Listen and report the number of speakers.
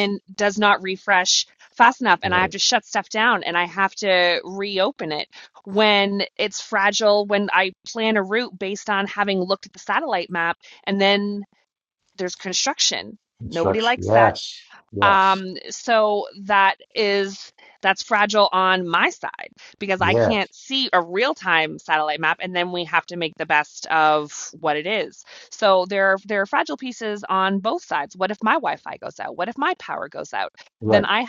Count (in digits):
2